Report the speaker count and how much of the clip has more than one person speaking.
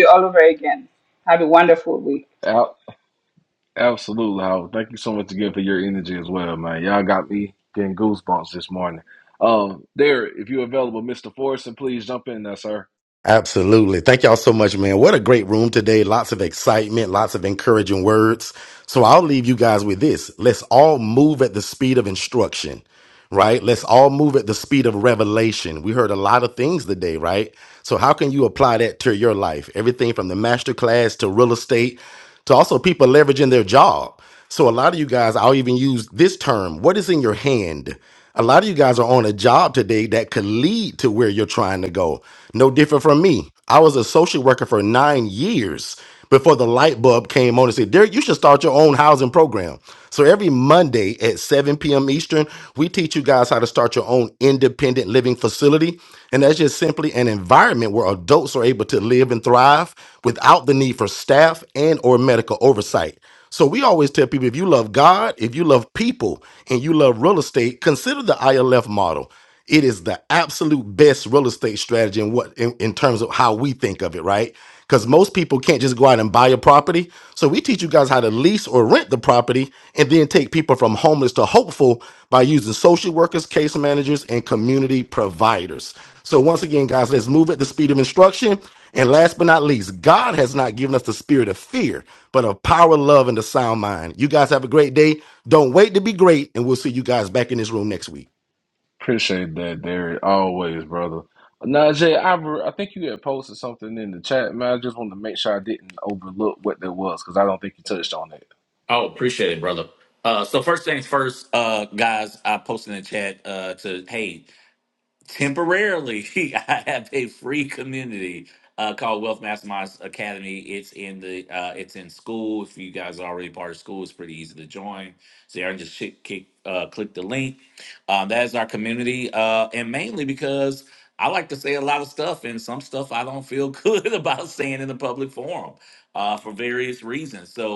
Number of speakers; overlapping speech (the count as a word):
four, no overlap